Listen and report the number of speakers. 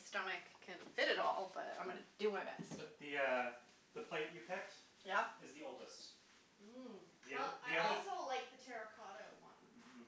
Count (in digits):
2